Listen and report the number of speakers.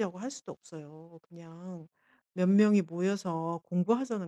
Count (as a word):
one